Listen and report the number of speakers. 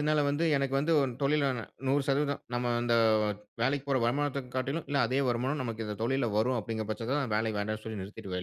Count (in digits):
1